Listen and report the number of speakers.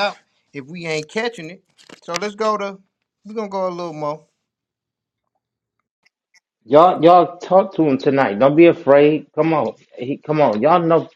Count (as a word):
two